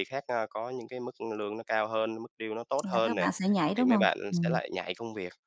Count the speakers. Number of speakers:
2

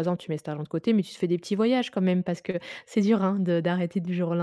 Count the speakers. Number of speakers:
1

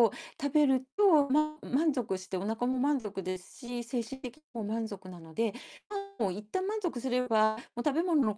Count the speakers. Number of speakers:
1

